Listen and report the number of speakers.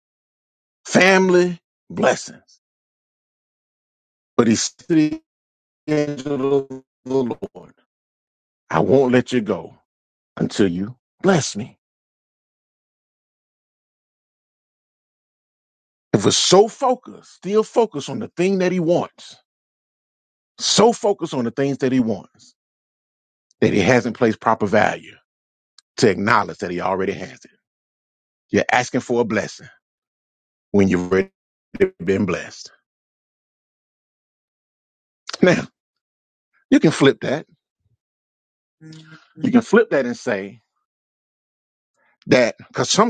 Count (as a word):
one